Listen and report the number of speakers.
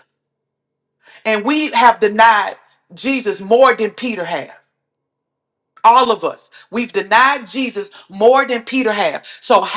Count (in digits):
1